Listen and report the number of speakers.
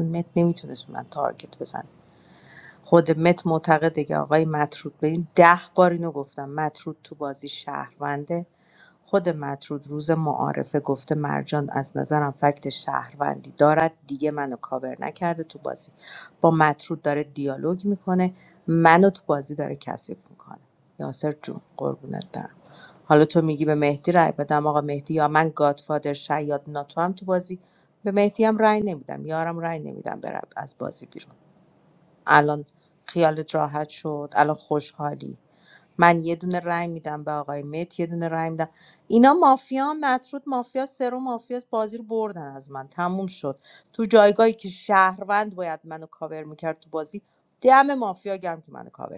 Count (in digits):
1